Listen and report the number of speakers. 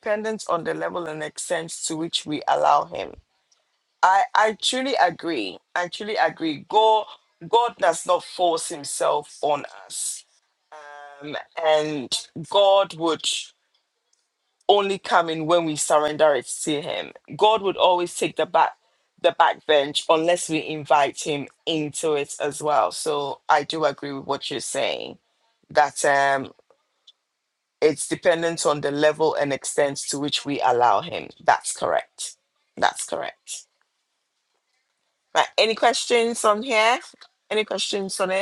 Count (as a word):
one